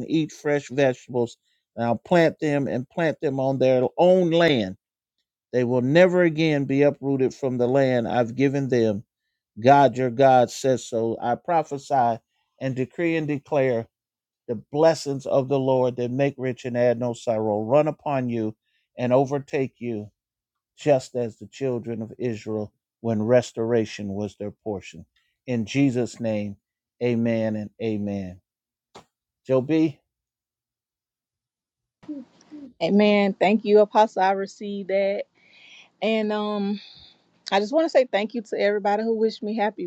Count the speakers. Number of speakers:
2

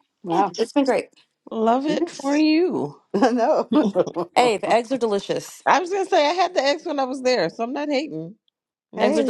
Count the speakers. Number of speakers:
3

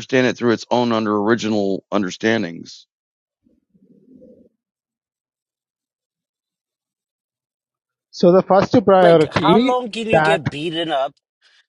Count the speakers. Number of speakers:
3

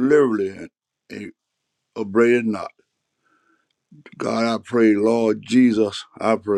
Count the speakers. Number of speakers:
1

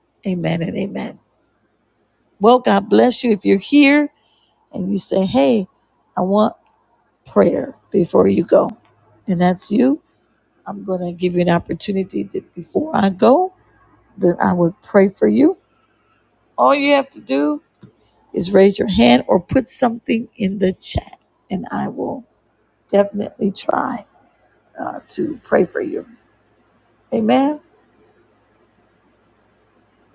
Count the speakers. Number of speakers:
1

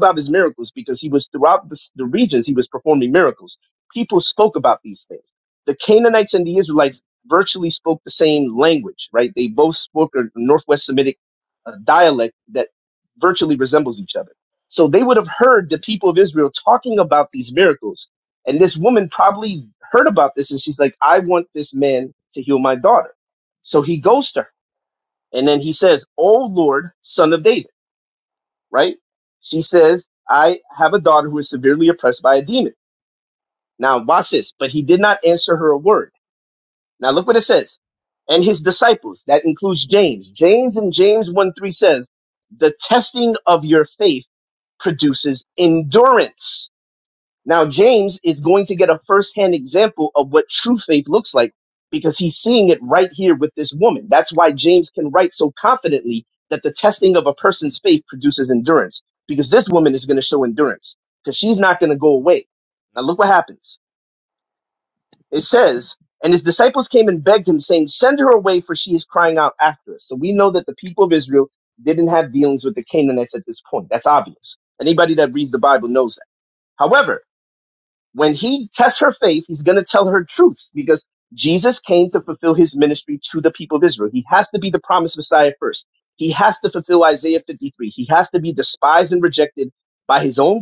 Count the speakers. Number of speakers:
1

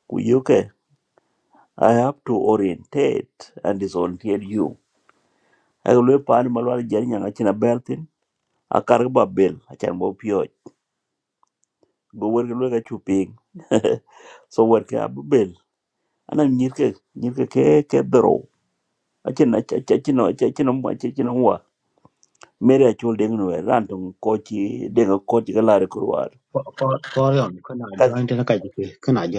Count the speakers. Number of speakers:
2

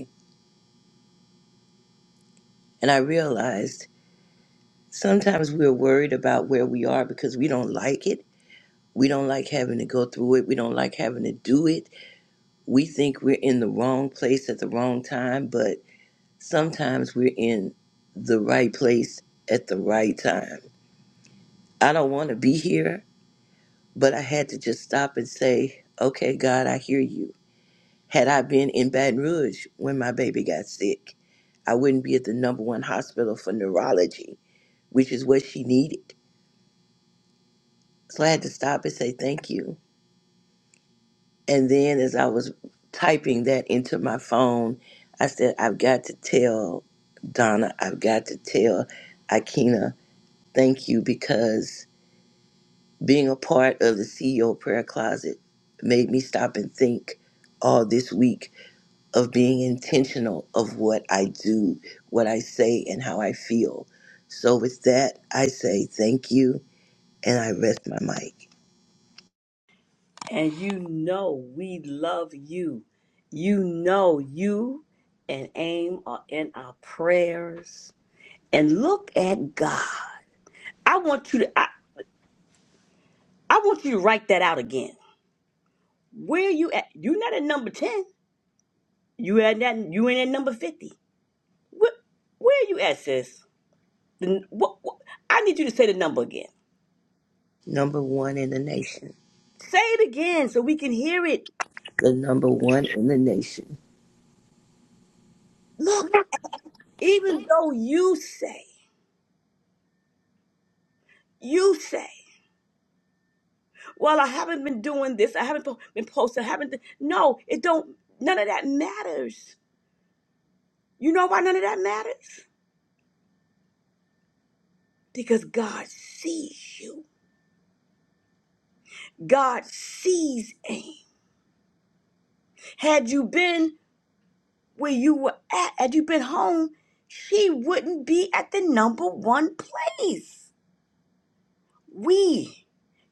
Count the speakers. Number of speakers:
2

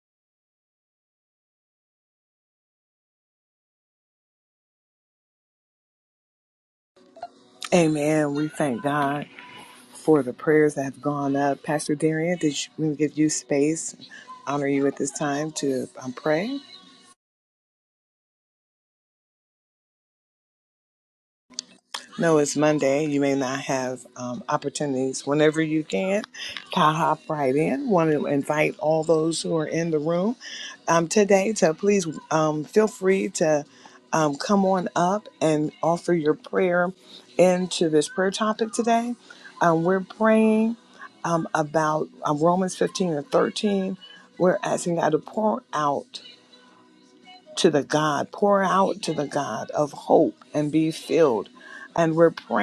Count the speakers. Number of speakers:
1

